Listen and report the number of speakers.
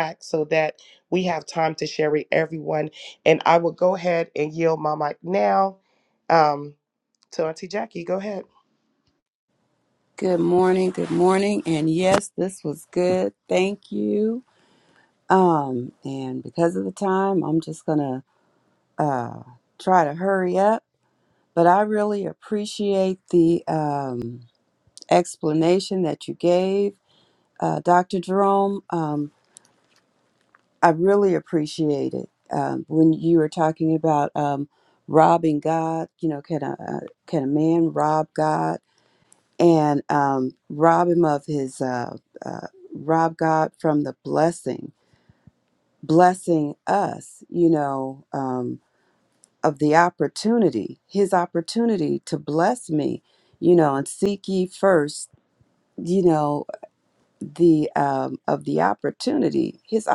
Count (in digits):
2